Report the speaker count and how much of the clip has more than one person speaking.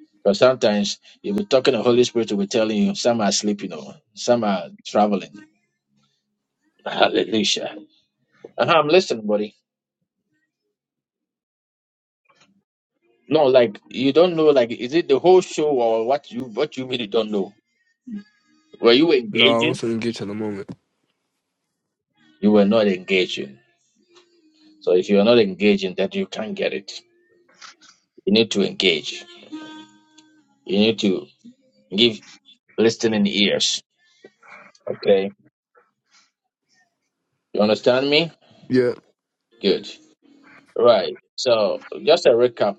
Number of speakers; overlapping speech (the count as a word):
two, about 1%